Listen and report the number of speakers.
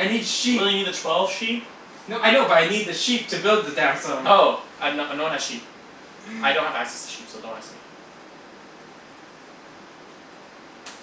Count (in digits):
2